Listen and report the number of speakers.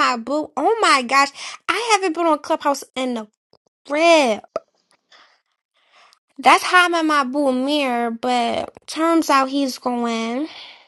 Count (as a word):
one